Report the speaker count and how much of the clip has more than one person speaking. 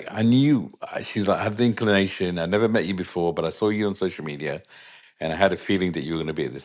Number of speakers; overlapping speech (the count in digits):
1, no overlap